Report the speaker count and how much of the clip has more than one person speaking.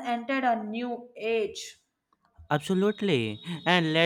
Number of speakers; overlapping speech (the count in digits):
2, no overlap